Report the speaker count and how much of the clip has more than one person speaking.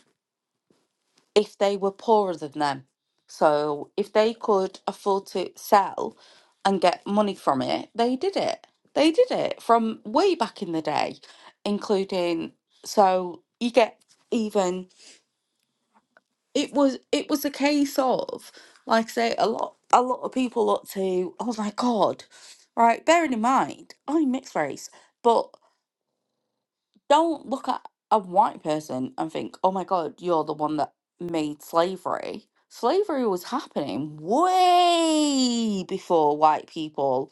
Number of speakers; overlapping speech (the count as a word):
one, no overlap